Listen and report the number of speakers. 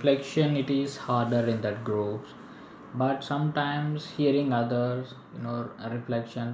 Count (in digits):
1